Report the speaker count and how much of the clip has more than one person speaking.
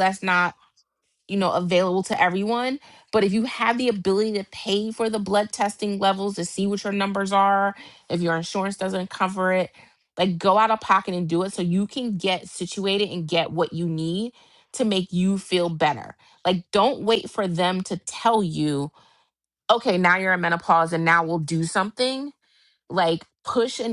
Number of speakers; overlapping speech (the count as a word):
one, no overlap